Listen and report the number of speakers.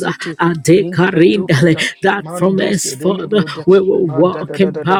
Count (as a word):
two